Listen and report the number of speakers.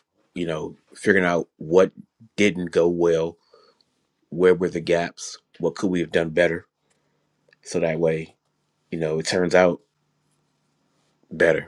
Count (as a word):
one